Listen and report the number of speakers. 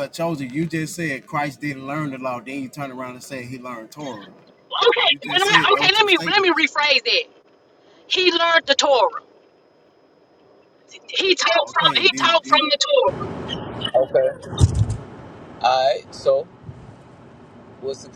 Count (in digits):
3